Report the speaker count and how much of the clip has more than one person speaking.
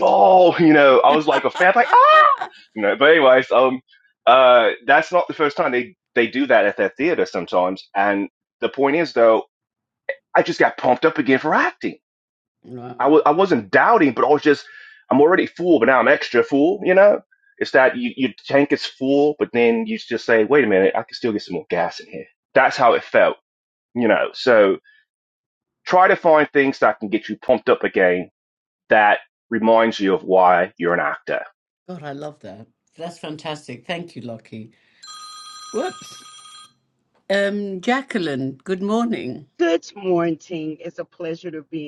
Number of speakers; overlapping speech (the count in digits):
3, under 1%